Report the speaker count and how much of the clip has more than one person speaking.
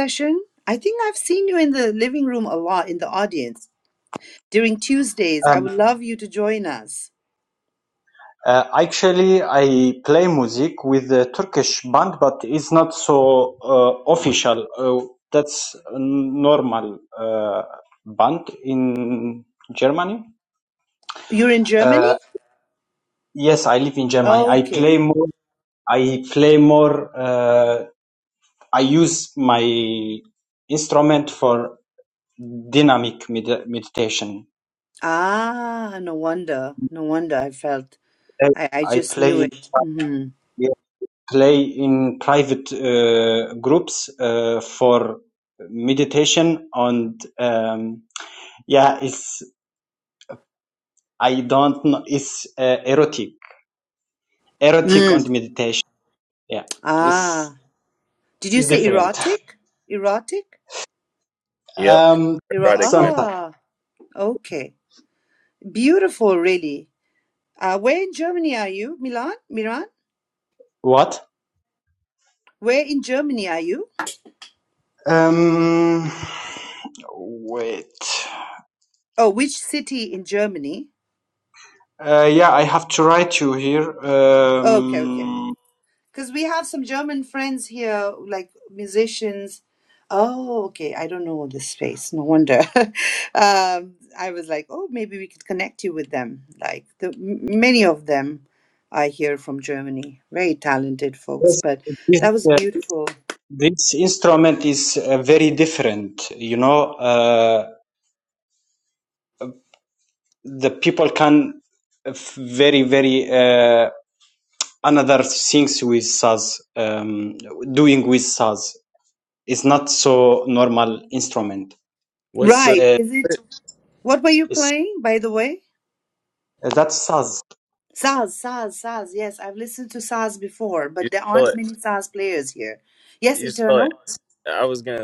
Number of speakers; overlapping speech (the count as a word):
three, about 5%